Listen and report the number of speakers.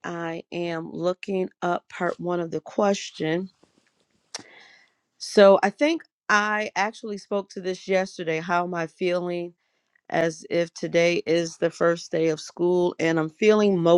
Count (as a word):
one